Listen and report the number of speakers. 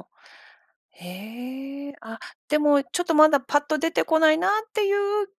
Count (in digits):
1